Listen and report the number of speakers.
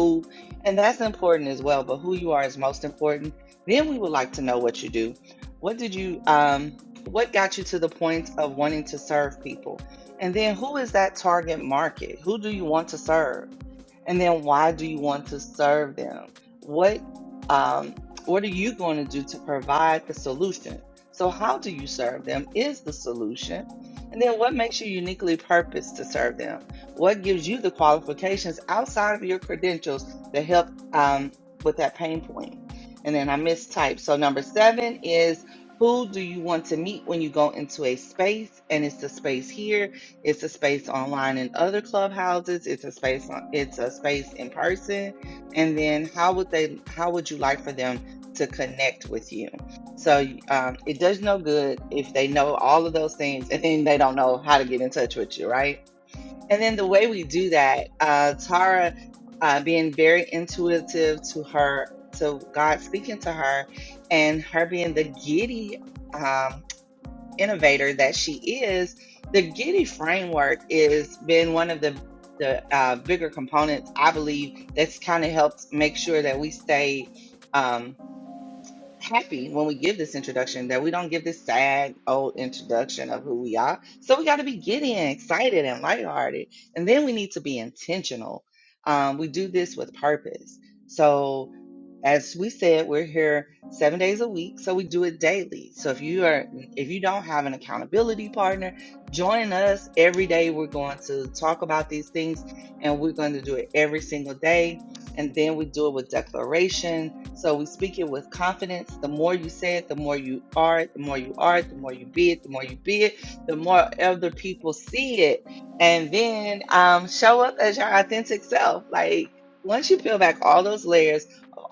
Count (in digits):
1